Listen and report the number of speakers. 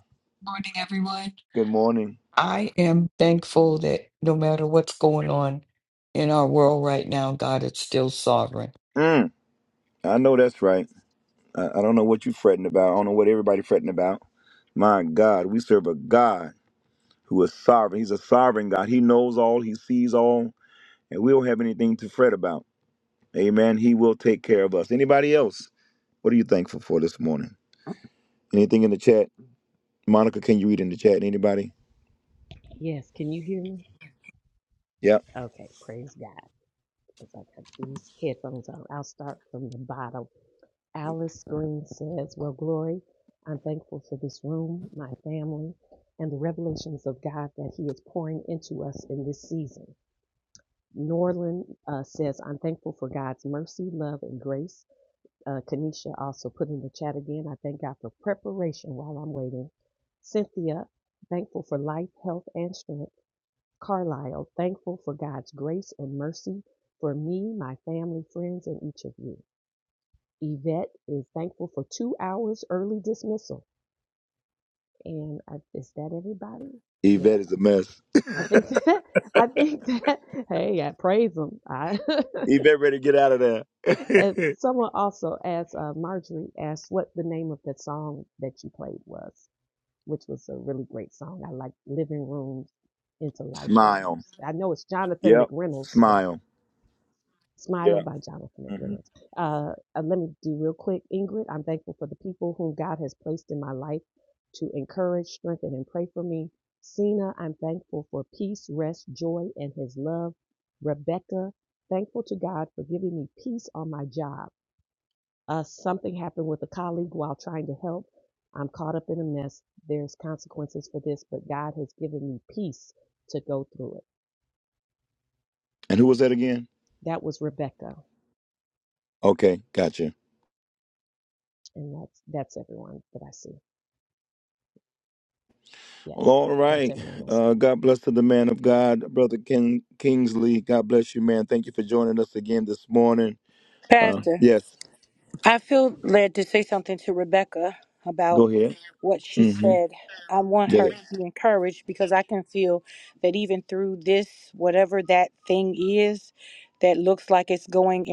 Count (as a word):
four